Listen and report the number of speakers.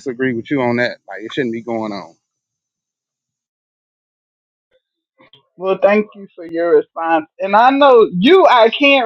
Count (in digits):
2